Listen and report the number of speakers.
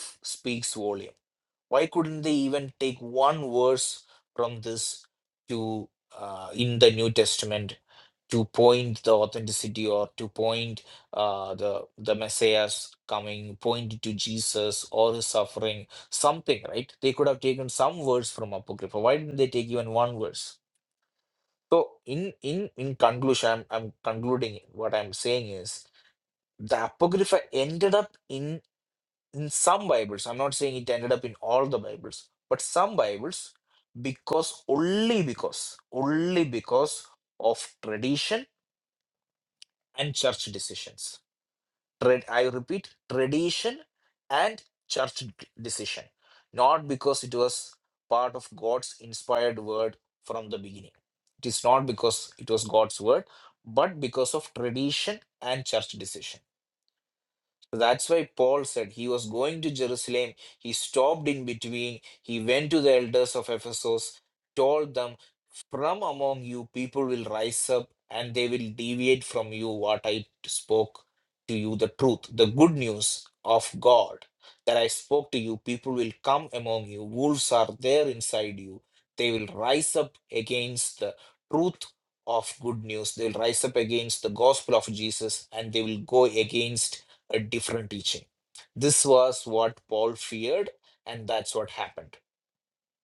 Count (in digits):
1